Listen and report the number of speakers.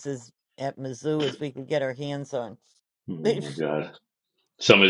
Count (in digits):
2